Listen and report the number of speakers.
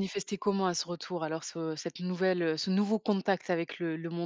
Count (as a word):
one